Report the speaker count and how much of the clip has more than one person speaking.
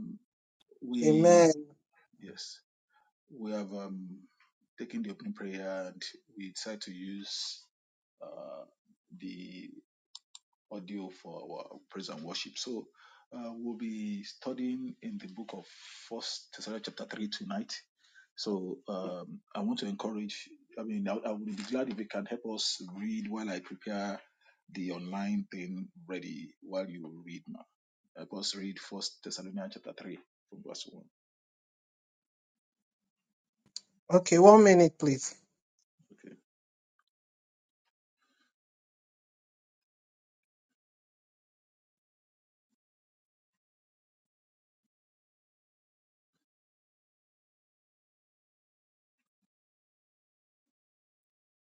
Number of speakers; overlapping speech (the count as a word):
two, about 1%